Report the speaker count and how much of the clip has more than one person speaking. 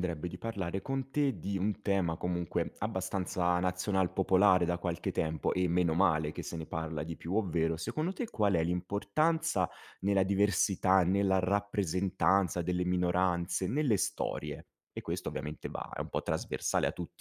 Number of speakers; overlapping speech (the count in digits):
1, no overlap